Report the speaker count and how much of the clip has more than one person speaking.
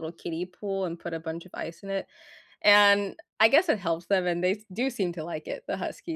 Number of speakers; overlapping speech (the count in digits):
1, no overlap